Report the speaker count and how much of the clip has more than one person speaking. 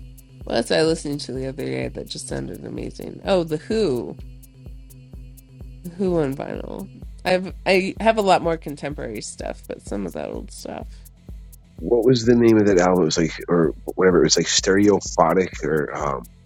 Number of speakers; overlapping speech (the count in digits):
2, no overlap